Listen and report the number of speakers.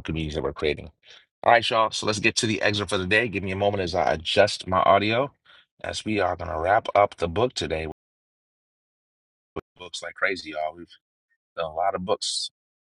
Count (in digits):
1